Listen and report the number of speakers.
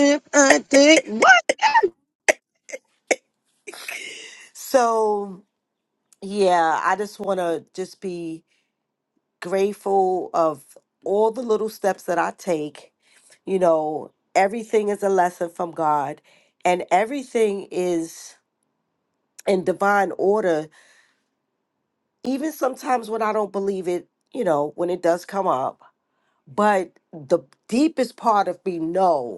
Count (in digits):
2